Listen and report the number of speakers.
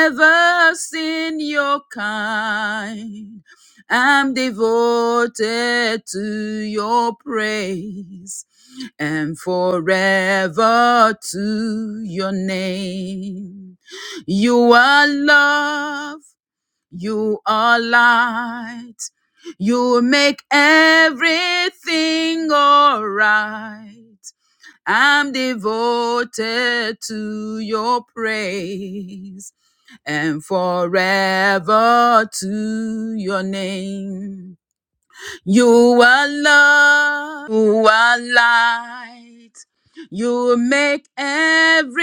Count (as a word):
one